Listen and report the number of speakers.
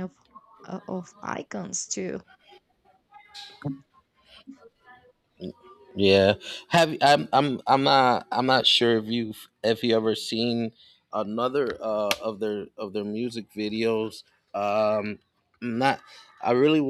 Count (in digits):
2